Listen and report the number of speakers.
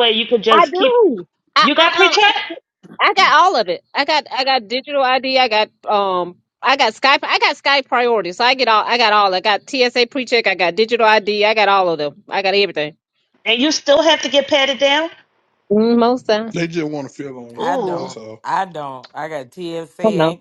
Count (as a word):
four